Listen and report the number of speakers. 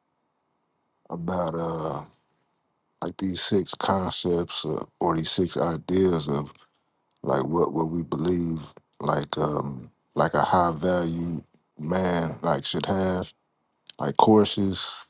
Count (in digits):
1